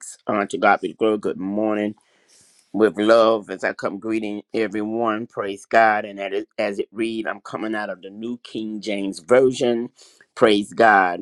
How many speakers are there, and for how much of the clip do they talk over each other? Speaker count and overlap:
1, no overlap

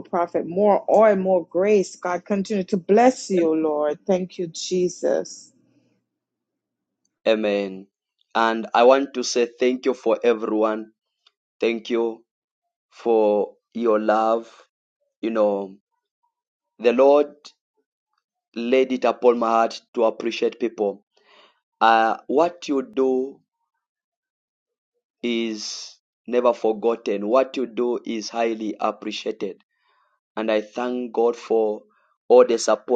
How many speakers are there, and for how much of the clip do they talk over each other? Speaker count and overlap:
2, no overlap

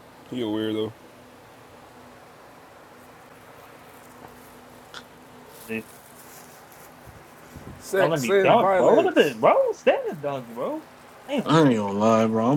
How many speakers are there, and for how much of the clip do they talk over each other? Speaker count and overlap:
3, about 11%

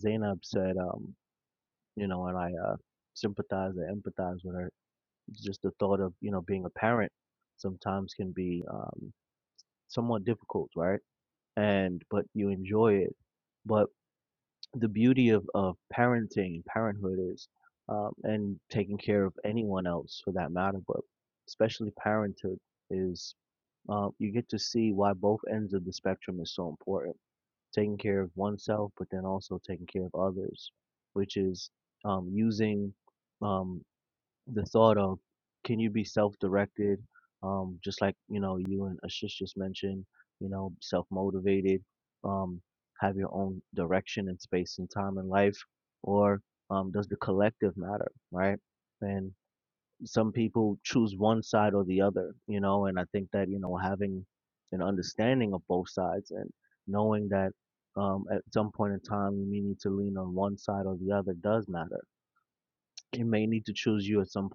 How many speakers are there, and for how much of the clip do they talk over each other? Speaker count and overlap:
1, no overlap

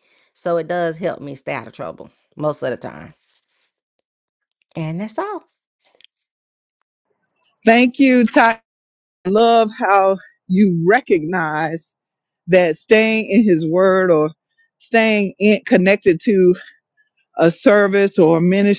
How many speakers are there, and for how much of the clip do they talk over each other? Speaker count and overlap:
2, no overlap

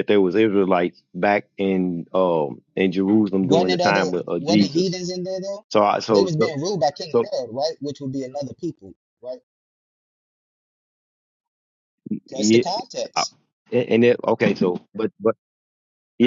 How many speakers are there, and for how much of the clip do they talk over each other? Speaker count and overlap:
2, about 15%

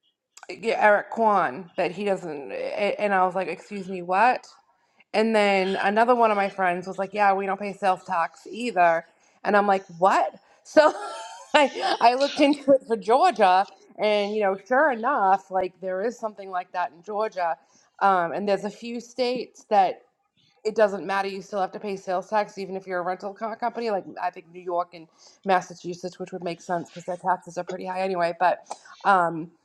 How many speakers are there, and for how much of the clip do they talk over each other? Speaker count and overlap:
1, no overlap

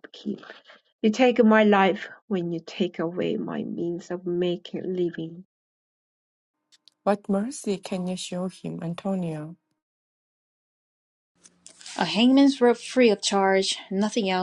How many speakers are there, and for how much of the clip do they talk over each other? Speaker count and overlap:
3, no overlap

